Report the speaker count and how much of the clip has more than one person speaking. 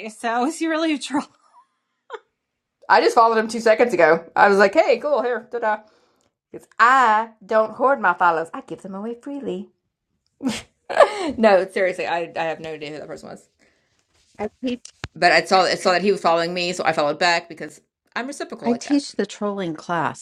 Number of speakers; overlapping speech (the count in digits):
3, about 2%